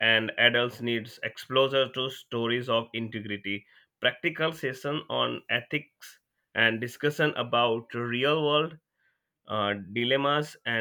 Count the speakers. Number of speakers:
1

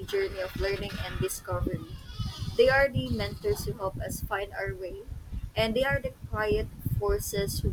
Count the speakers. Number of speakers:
1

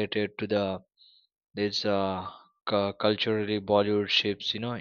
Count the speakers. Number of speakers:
1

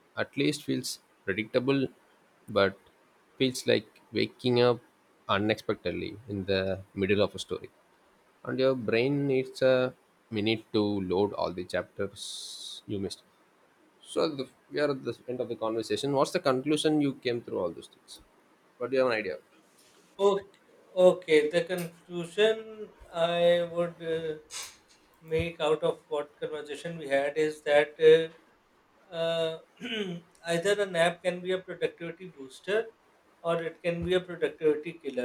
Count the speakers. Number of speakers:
2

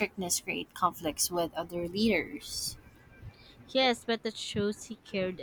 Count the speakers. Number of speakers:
2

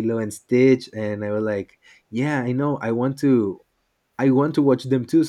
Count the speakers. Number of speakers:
1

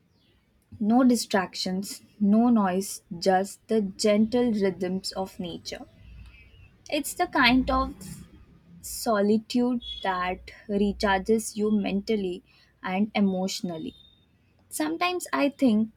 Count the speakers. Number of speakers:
1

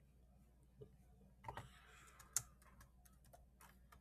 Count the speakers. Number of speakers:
0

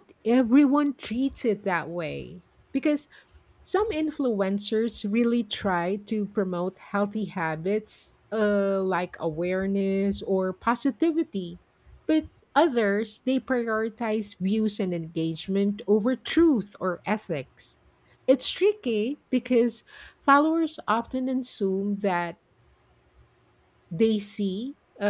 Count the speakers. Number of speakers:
1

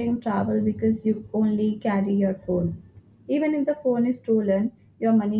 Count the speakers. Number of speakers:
1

